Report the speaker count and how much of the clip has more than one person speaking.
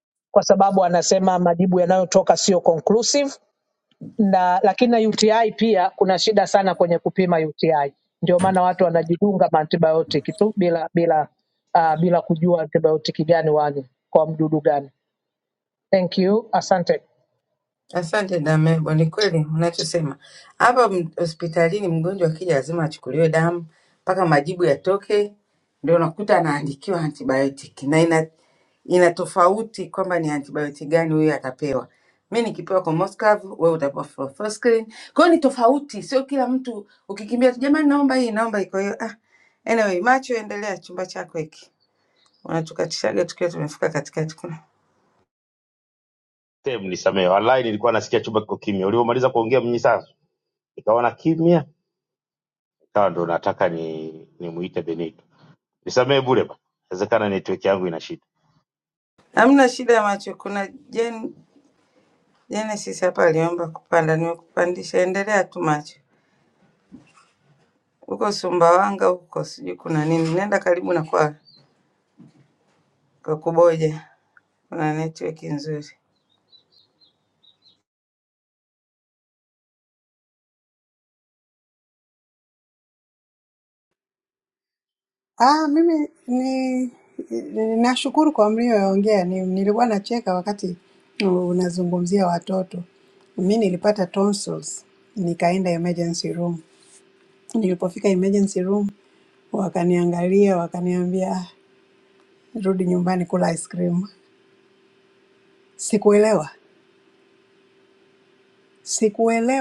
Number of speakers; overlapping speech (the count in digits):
4, no overlap